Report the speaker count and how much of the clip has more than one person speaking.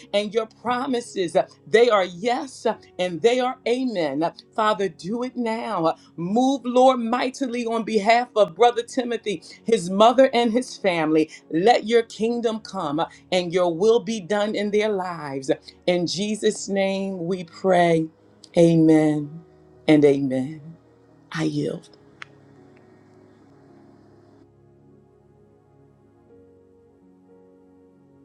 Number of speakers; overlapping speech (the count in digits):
1, no overlap